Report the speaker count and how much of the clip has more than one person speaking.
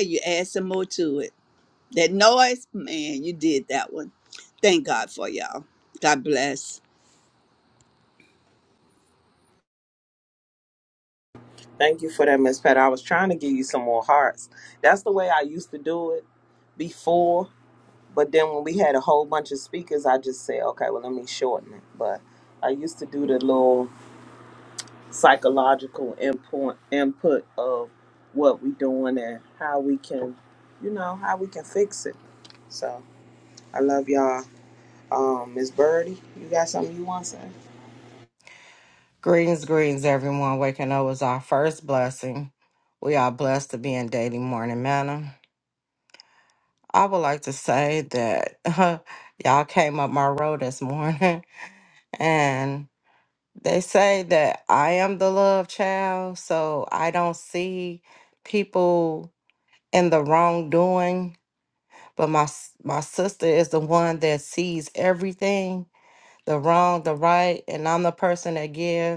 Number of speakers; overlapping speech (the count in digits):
3, no overlap